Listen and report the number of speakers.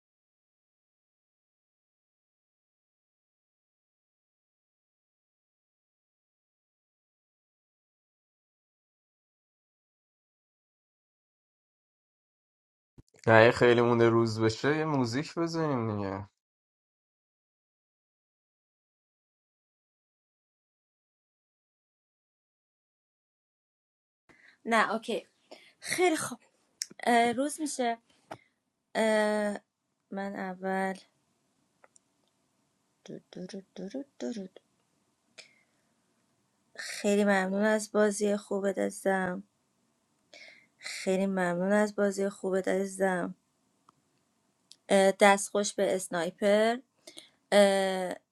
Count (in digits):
2